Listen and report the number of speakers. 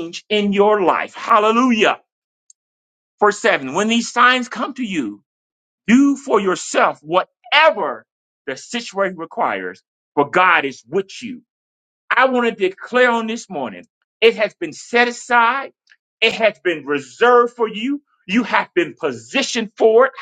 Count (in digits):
1